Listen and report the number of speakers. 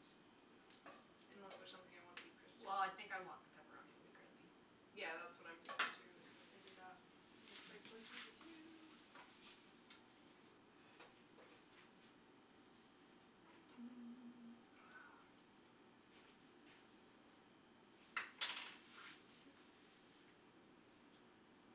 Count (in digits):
2